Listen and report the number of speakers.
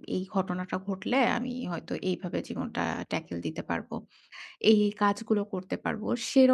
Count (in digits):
1